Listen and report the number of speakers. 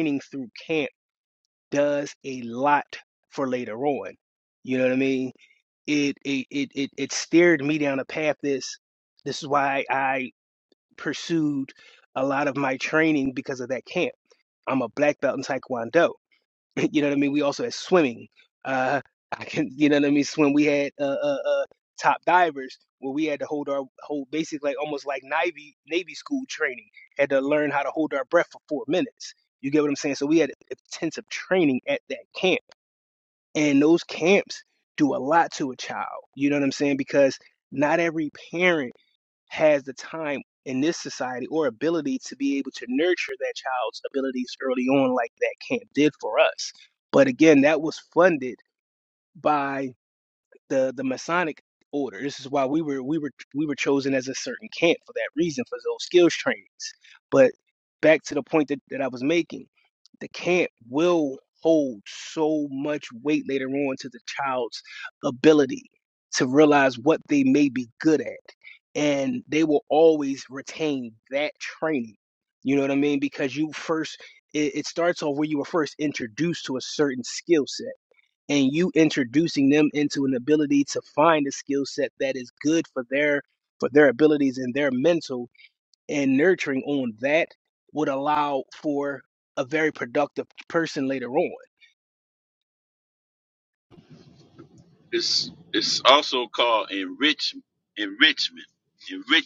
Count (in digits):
2